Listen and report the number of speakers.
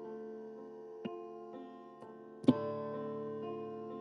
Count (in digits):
0